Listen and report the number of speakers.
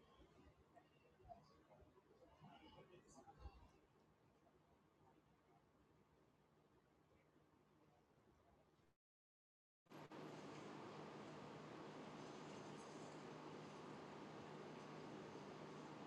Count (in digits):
0